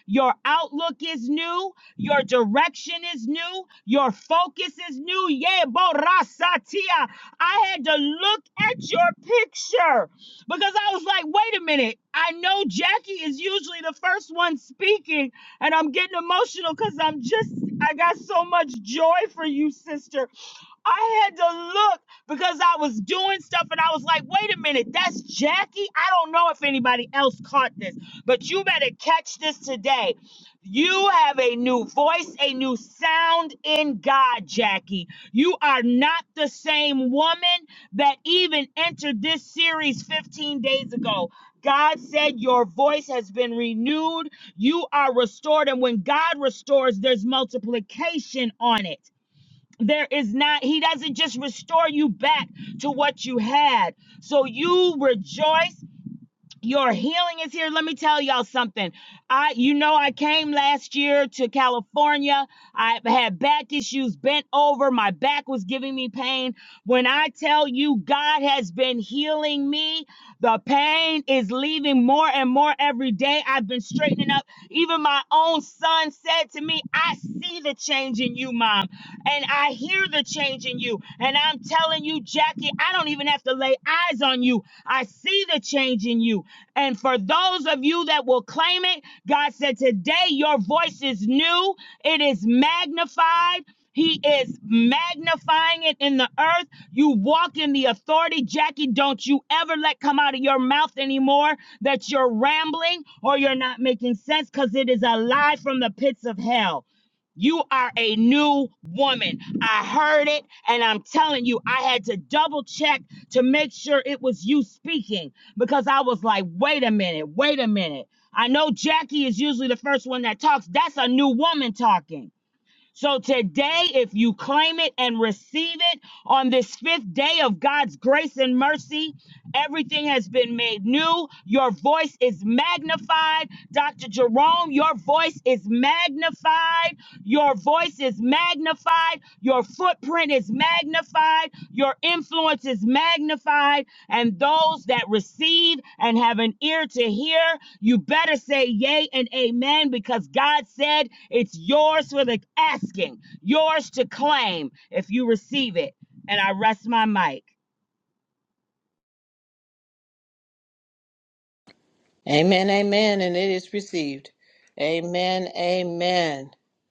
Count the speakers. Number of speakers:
2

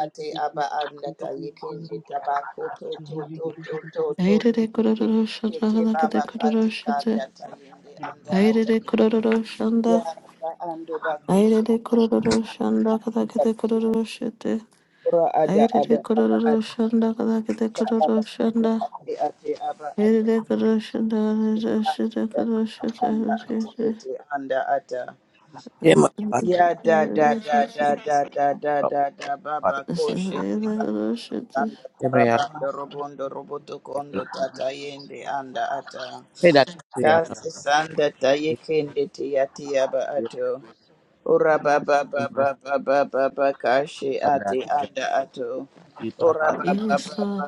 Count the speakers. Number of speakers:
3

